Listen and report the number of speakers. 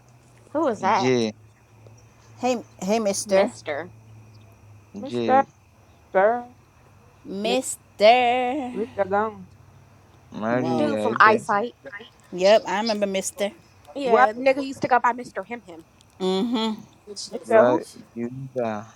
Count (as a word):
four